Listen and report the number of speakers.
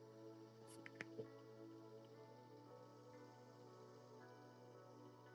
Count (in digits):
0